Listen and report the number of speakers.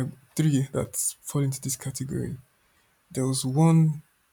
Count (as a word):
one